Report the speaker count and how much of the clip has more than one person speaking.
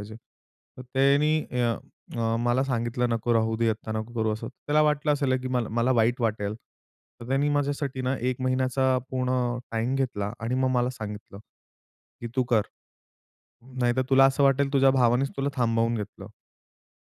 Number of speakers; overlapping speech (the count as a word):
one, no overlap